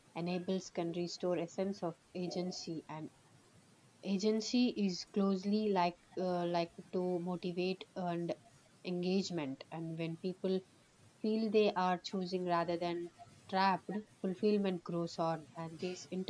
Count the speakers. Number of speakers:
one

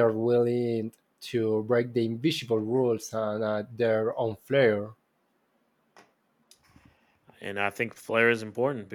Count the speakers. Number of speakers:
two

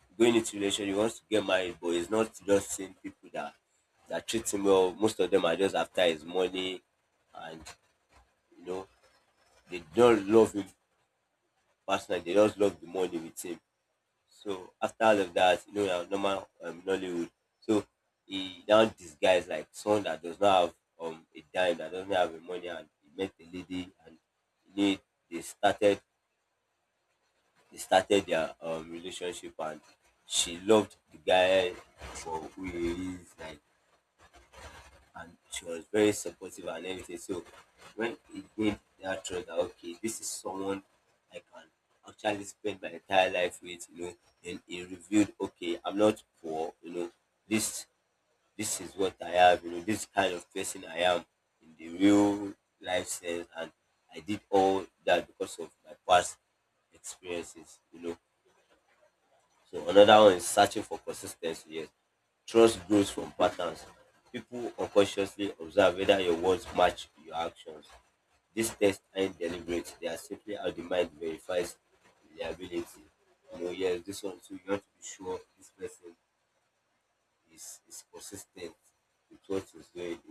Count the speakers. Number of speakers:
one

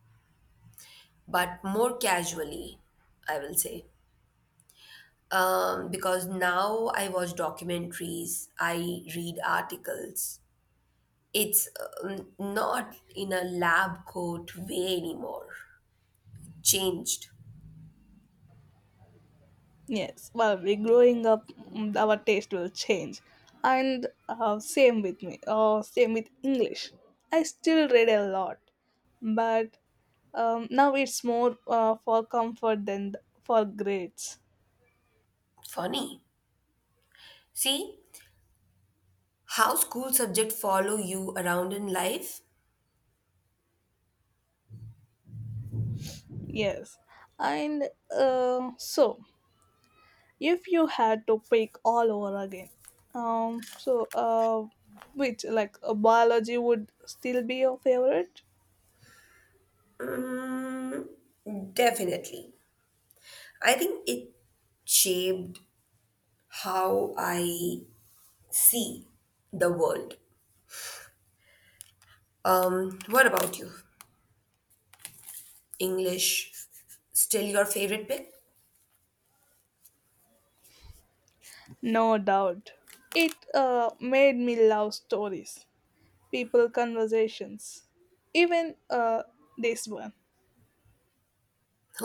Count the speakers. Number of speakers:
two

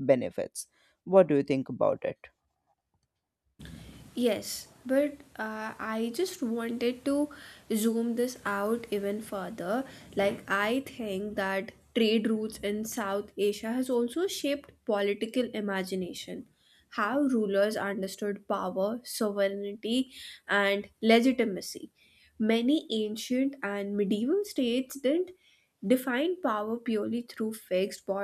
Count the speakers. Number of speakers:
two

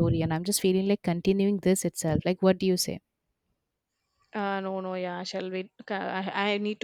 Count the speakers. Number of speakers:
two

